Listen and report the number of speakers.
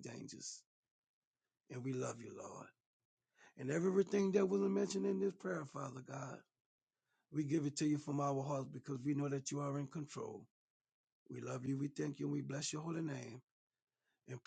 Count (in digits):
1